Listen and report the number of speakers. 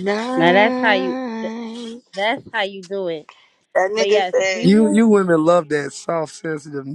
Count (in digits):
3